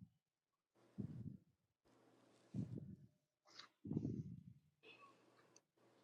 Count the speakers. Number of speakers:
zero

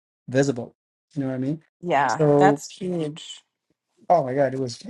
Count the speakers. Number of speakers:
two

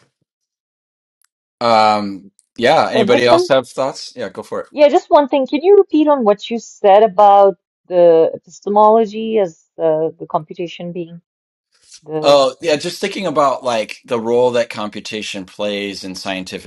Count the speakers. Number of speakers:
two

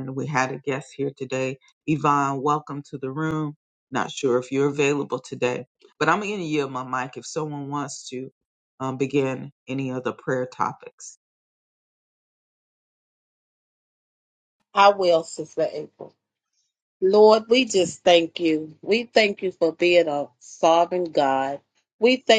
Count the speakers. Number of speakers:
two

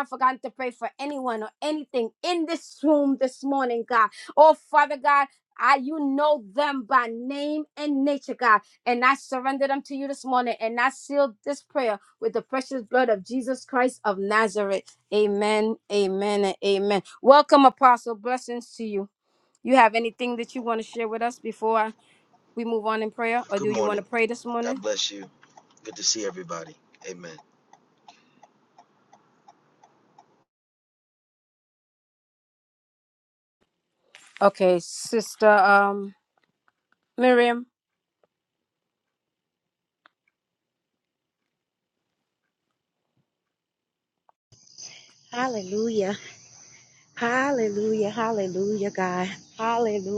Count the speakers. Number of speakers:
three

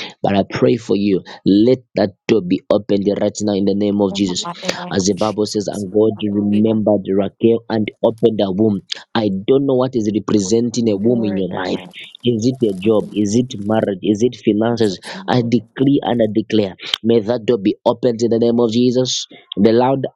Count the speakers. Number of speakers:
two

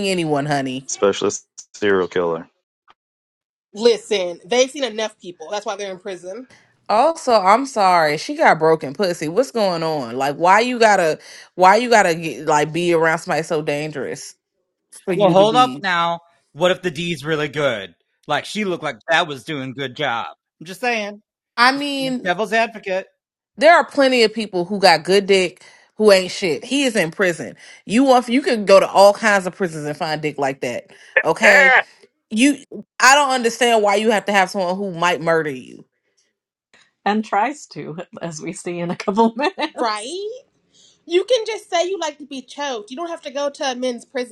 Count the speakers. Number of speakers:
five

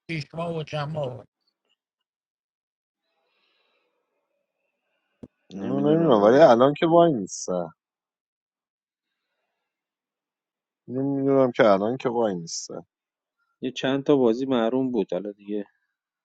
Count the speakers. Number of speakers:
three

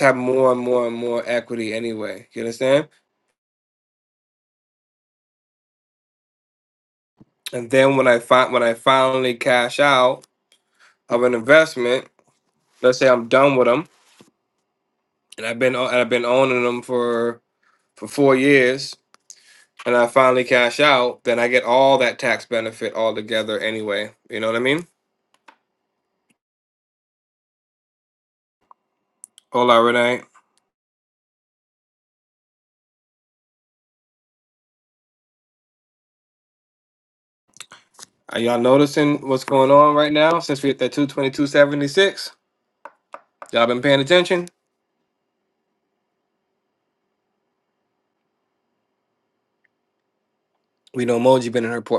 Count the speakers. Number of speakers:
one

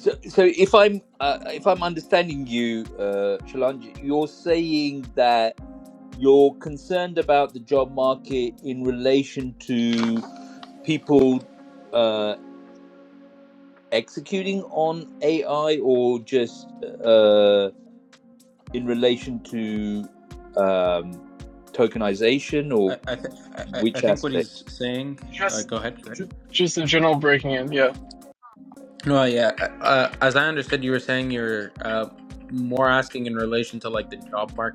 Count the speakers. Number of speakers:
three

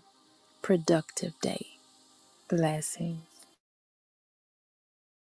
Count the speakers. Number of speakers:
one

